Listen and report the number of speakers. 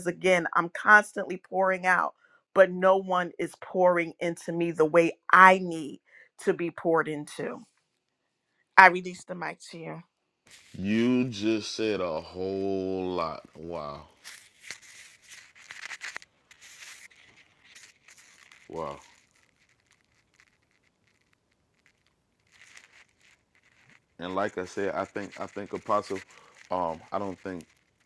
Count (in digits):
2